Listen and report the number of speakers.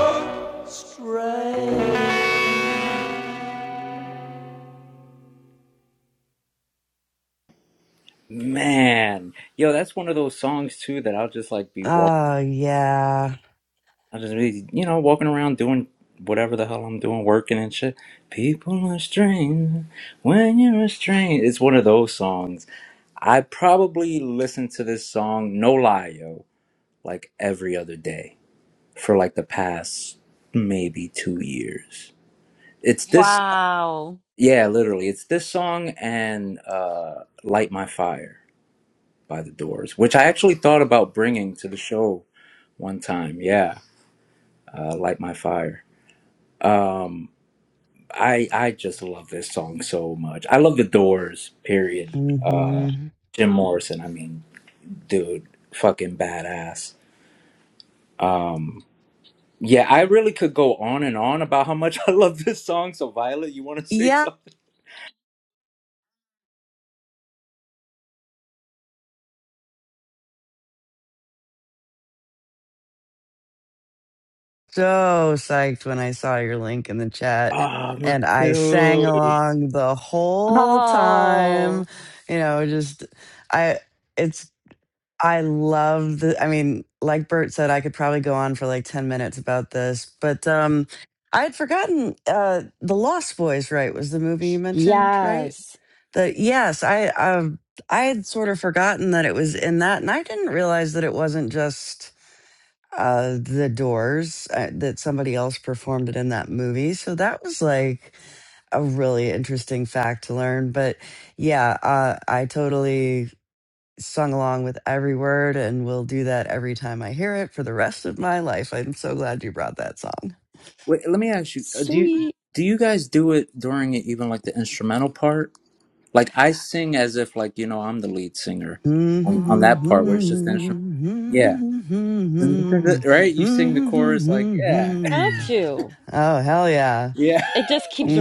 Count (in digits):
4